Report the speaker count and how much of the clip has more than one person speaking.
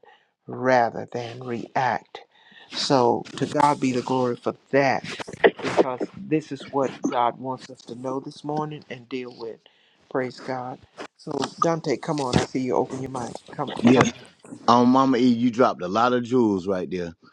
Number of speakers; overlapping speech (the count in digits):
2, about 2%